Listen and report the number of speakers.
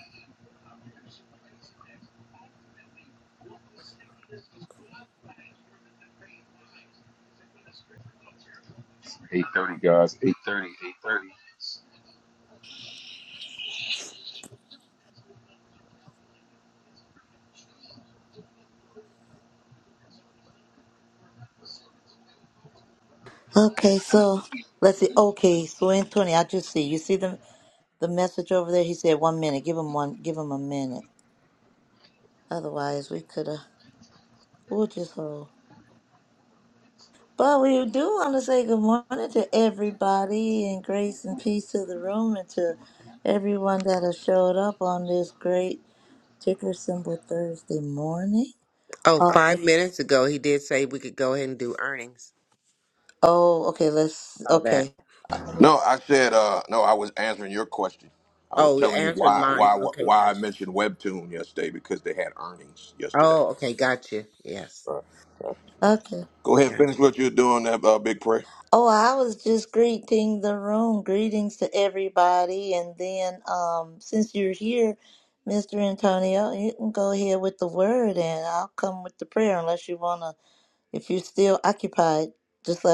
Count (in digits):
4